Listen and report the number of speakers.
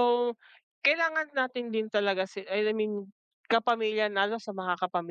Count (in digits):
1